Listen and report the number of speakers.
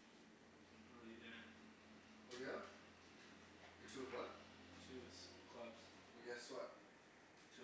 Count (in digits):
2